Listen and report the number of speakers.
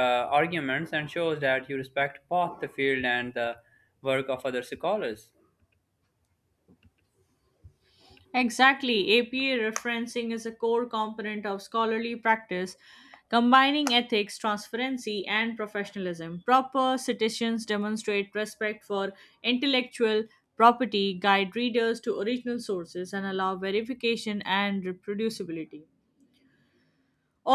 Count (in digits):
2